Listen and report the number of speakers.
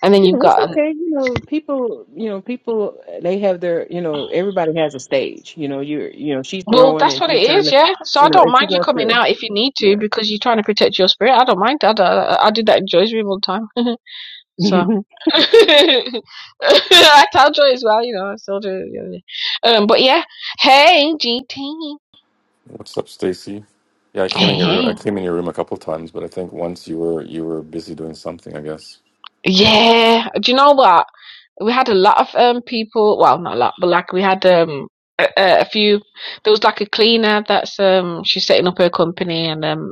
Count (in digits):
3